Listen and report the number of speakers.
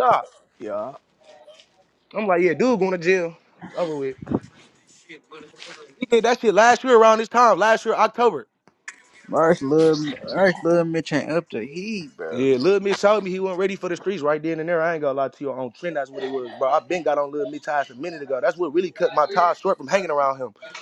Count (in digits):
2